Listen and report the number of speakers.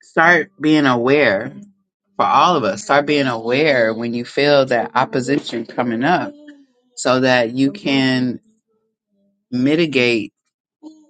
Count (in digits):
1